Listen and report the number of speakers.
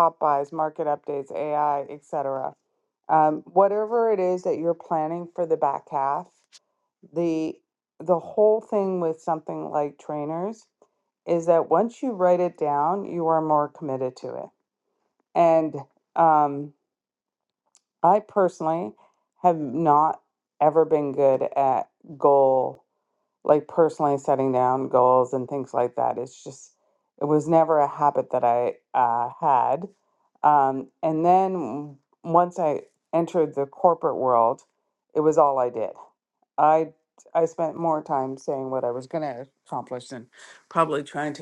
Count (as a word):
one